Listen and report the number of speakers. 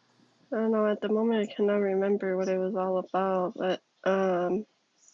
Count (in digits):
1